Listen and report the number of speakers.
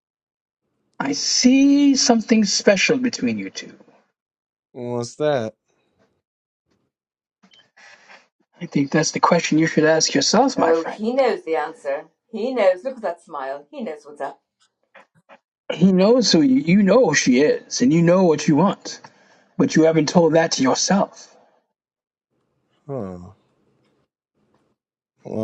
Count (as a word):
three